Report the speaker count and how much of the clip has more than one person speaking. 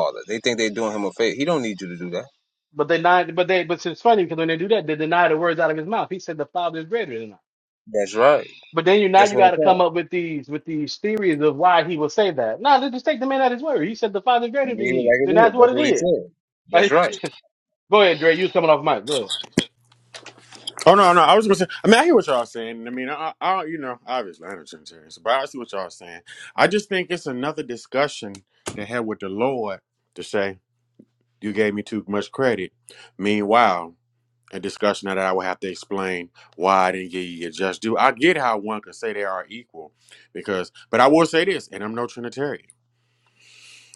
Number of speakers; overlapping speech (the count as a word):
three, about 5%